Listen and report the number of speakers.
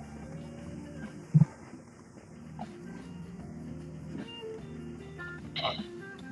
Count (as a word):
zero